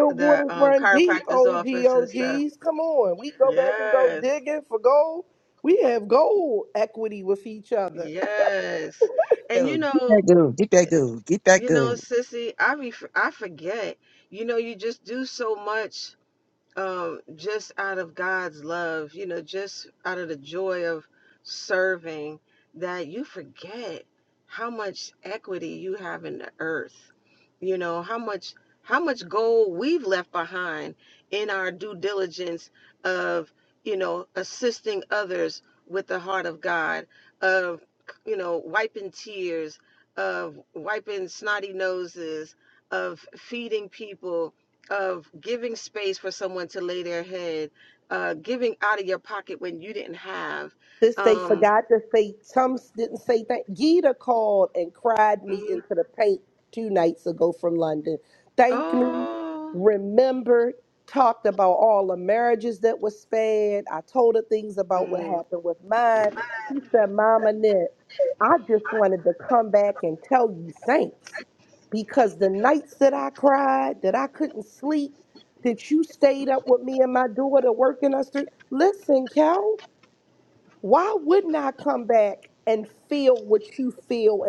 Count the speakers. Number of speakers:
3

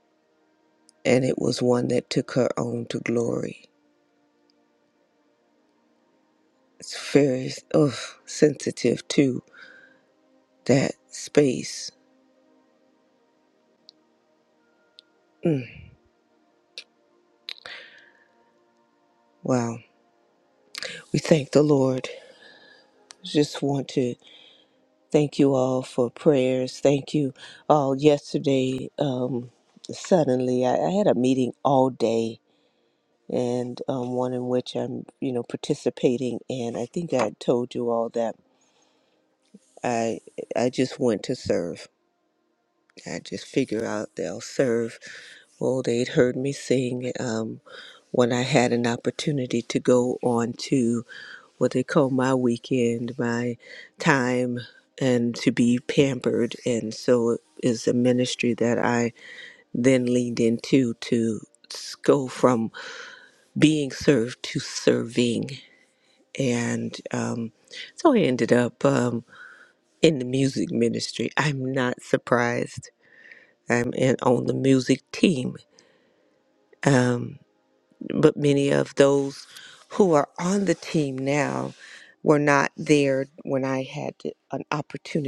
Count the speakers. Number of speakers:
1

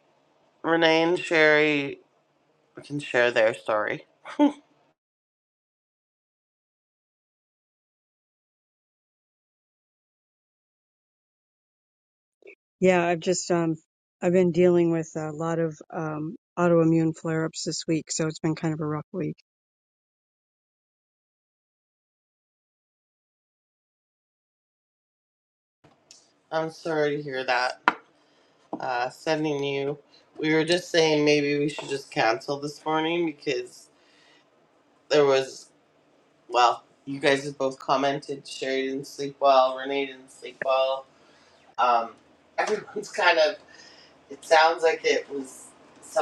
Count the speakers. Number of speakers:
2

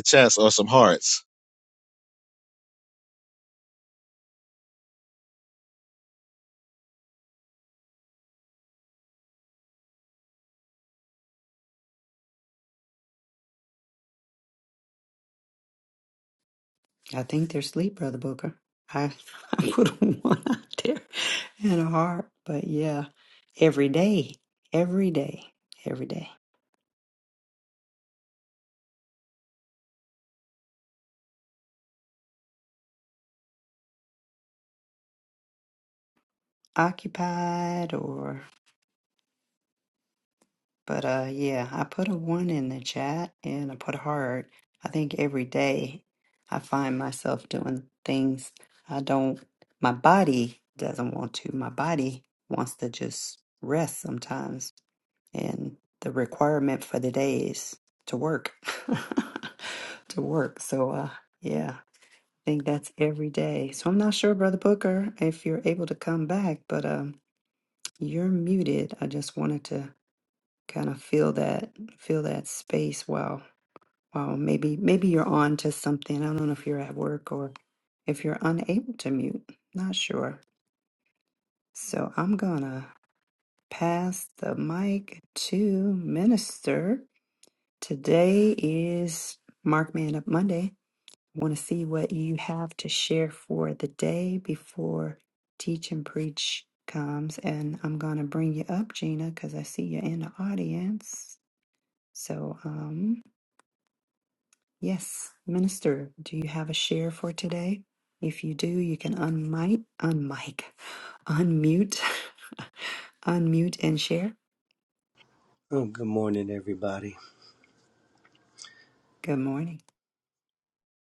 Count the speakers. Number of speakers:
3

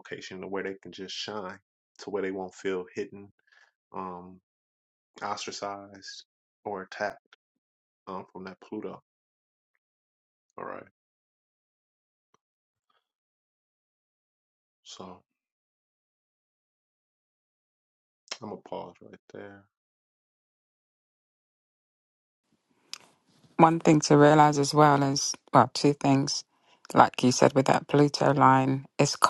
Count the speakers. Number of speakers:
2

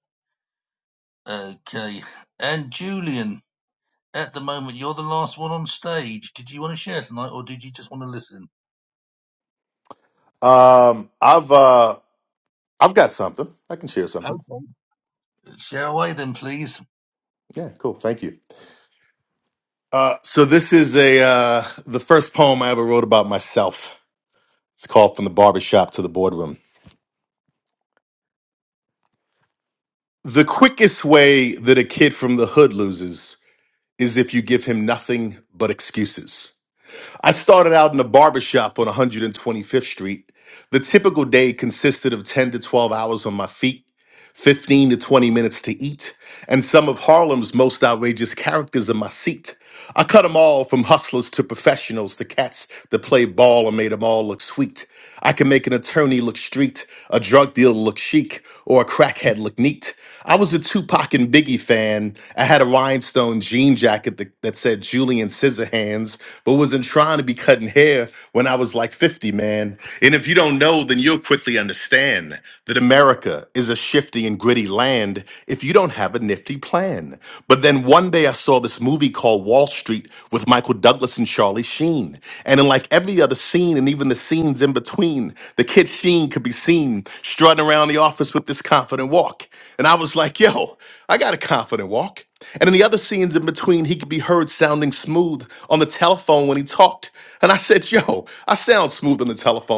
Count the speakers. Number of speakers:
2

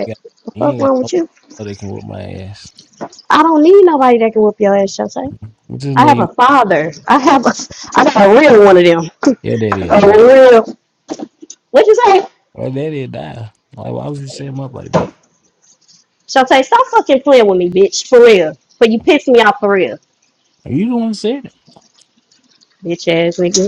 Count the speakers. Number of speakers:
2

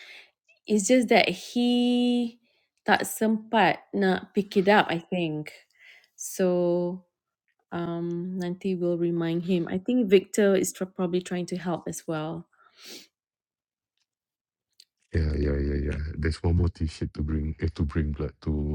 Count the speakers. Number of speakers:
2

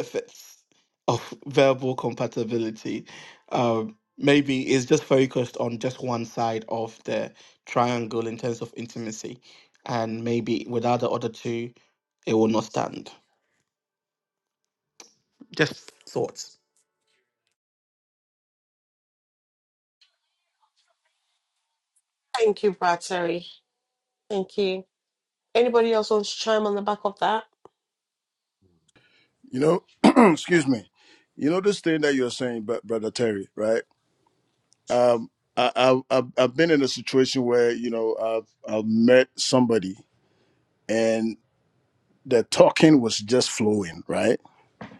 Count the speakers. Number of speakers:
3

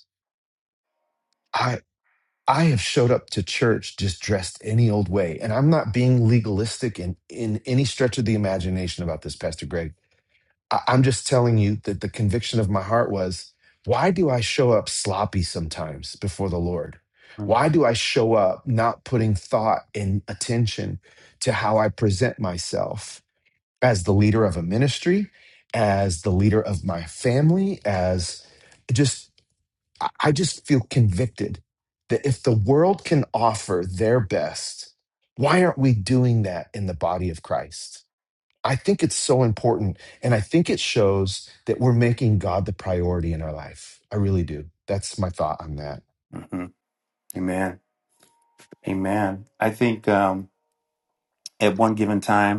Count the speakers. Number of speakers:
2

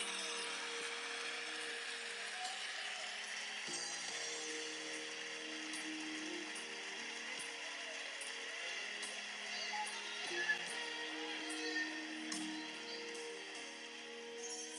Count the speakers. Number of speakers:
0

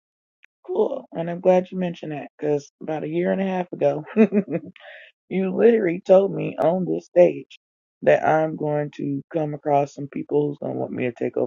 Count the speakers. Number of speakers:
1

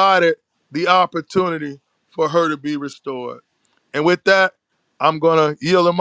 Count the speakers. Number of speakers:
1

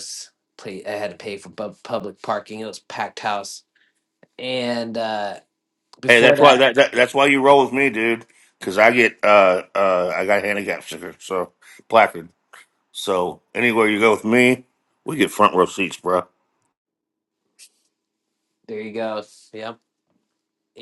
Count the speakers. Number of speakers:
2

